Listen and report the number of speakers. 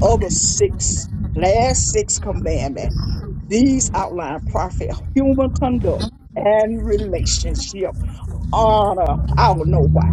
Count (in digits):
1